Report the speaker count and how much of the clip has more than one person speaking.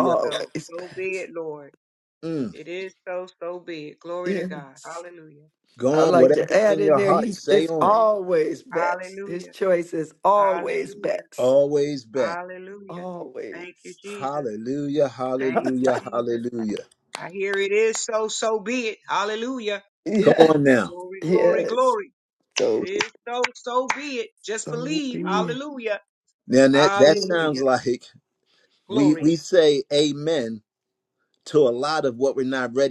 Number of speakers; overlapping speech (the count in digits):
3, about 32%